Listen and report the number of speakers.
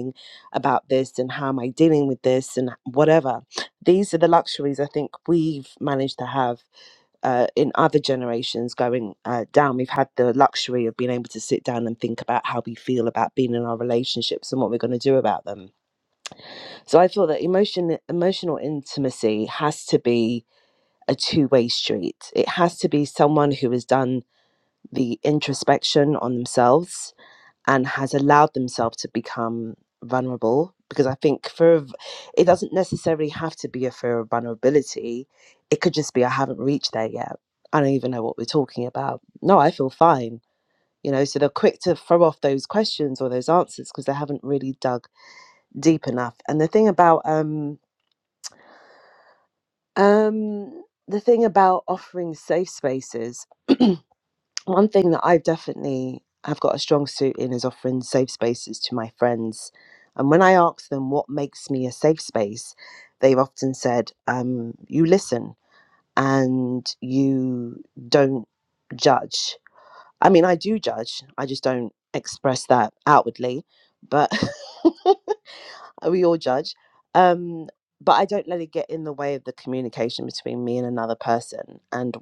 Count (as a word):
one